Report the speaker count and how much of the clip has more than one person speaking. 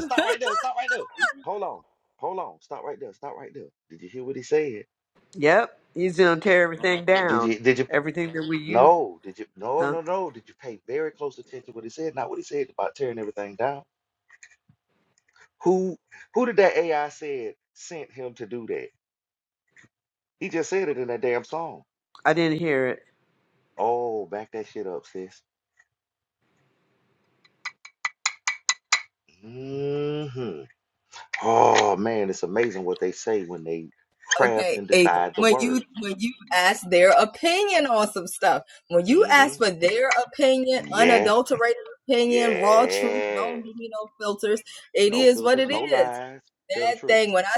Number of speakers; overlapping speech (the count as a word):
three, about 12%